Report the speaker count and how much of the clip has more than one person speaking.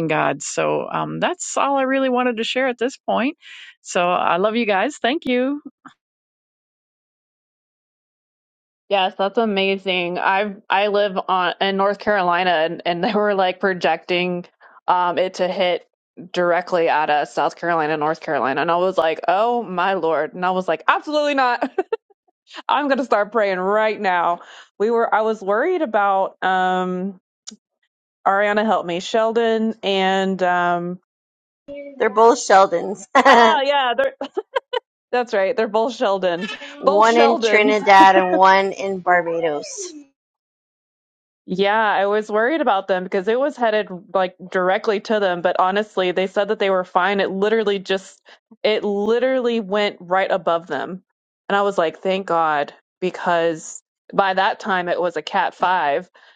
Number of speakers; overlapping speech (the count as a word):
three, about 2%